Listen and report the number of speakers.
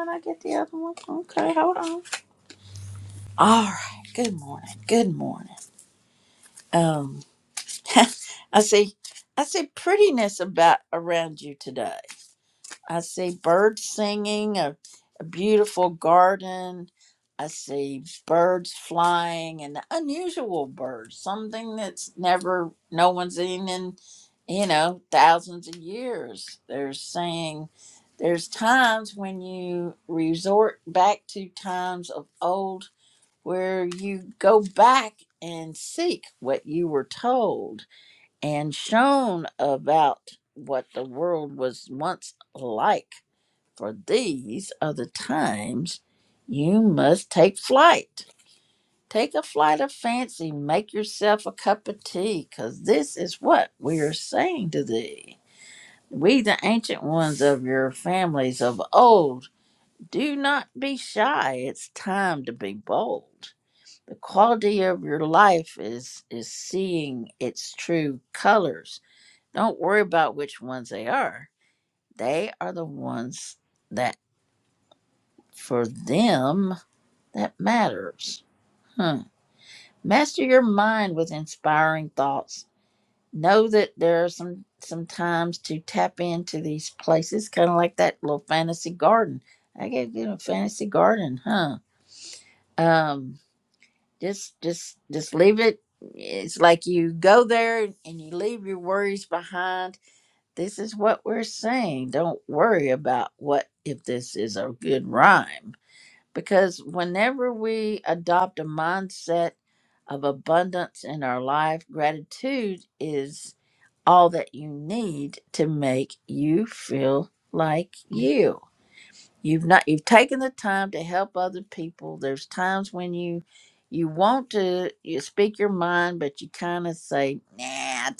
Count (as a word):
one